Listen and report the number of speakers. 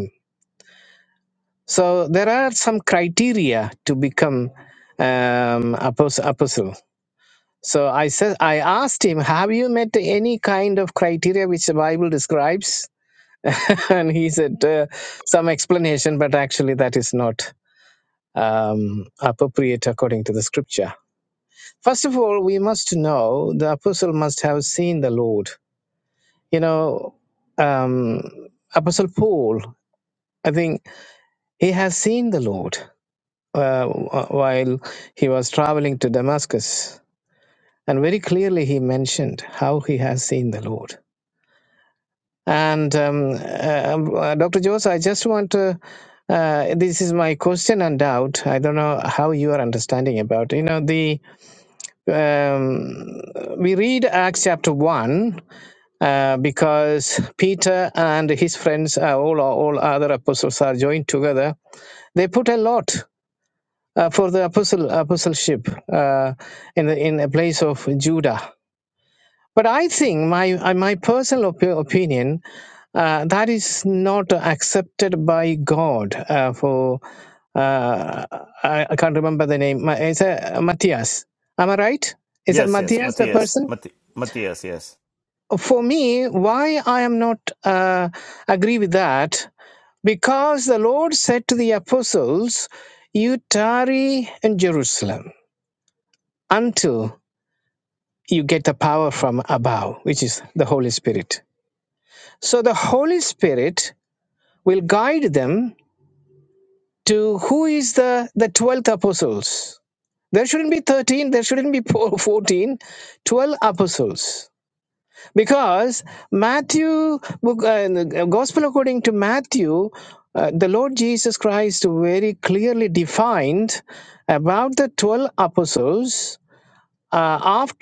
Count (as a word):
two